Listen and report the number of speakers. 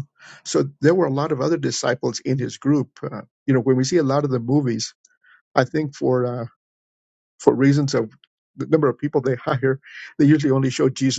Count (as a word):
one